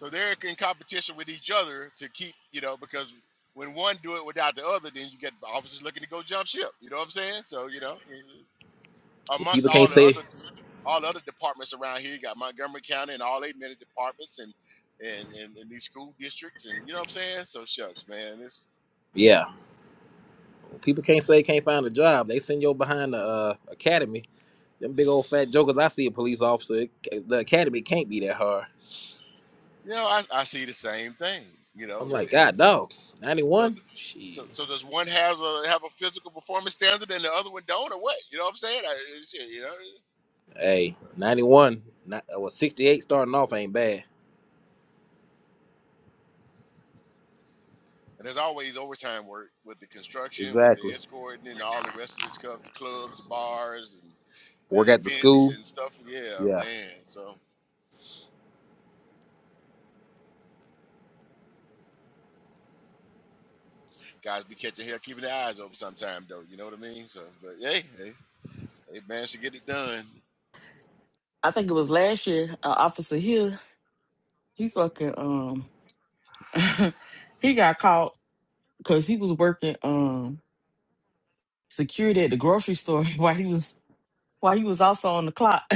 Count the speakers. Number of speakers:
3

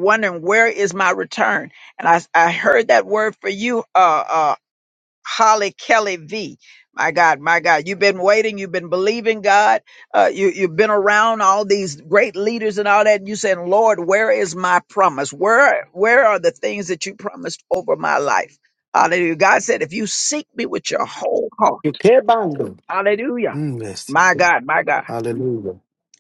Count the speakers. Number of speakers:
2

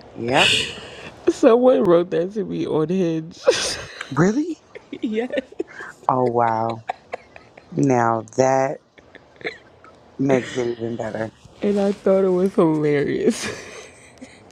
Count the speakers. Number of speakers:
2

